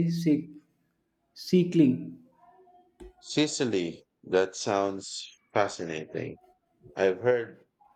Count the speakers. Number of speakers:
2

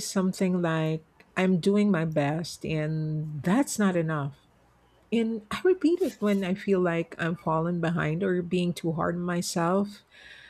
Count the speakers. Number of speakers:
1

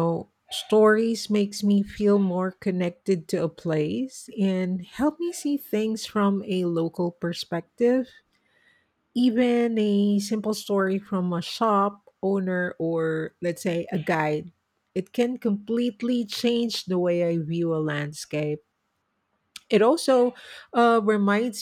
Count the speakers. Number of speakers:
1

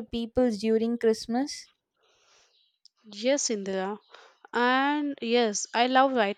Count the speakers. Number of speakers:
2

